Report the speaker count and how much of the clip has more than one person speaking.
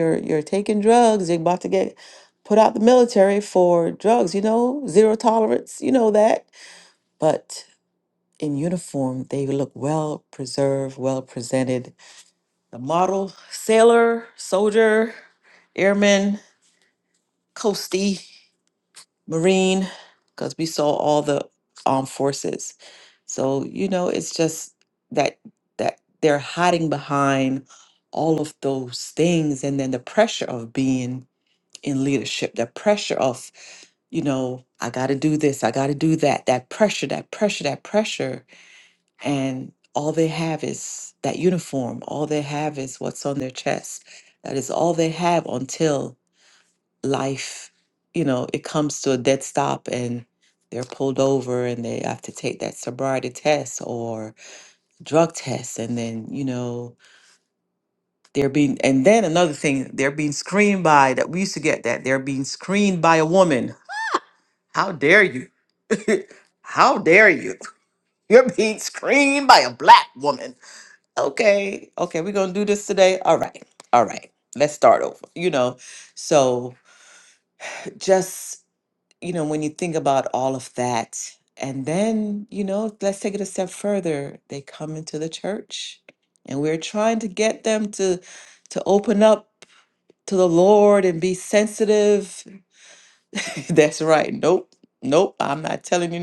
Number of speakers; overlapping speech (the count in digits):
1, no overlap